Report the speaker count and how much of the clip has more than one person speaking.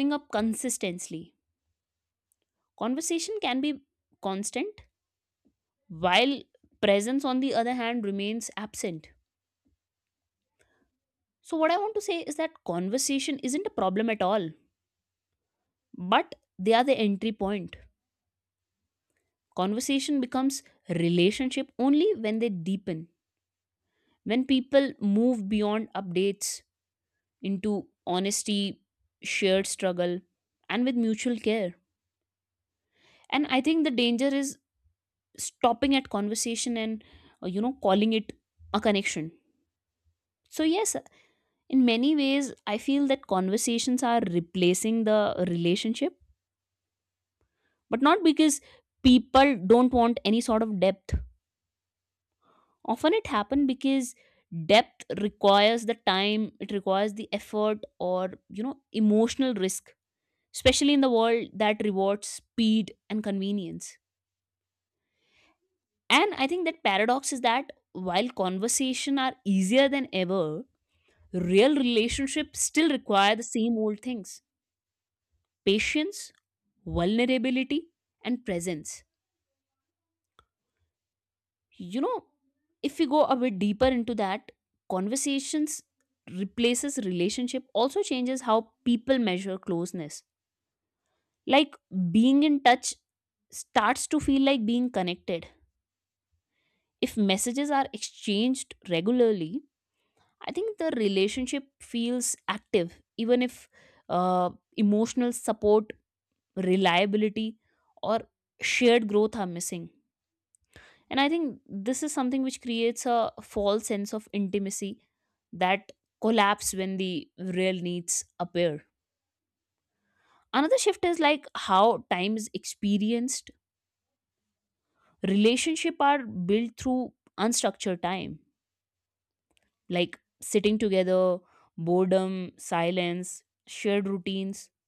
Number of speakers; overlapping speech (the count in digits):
1, no overlap